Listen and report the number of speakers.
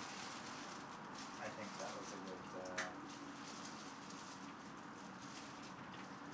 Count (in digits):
1